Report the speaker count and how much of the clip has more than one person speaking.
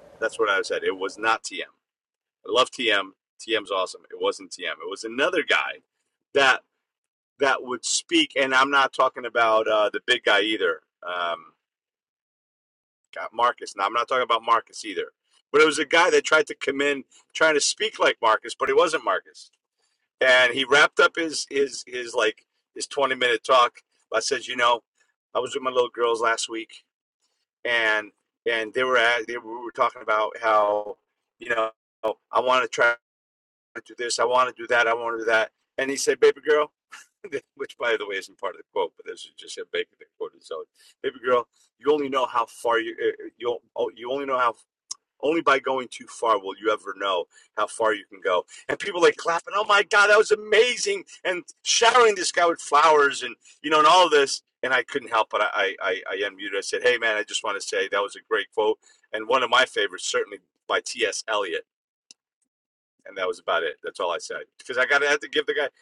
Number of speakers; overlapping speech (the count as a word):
one, no overlap